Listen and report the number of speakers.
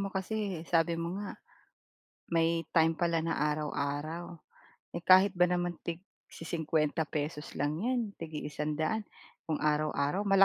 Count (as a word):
one